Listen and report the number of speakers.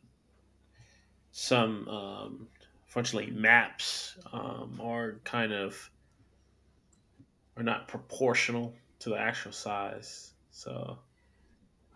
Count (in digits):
1